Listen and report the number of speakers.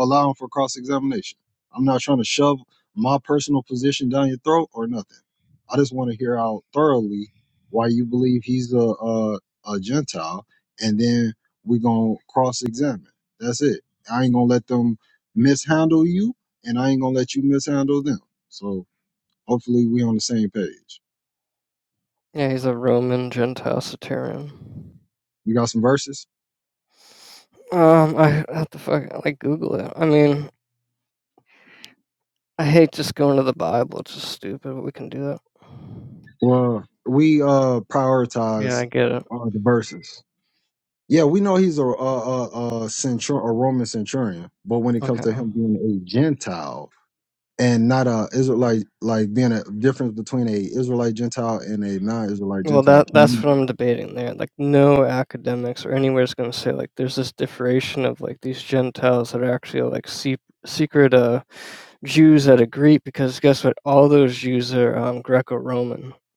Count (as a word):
two